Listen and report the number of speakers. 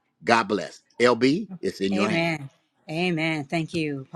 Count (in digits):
2